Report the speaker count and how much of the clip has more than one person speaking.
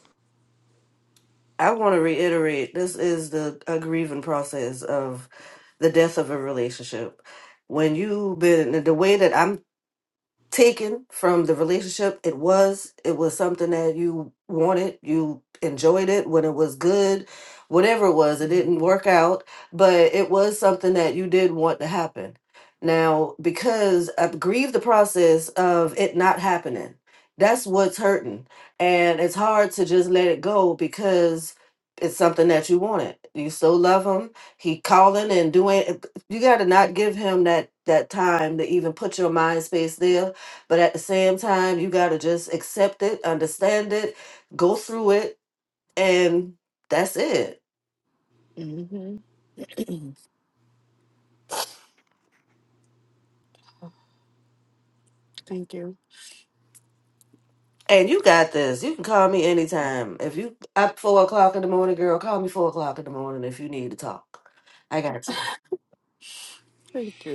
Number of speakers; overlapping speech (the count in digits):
2, no overlap